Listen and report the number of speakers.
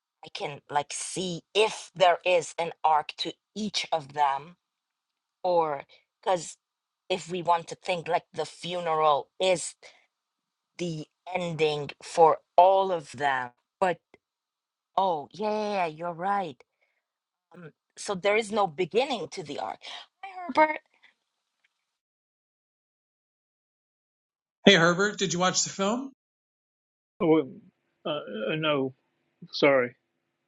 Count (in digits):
3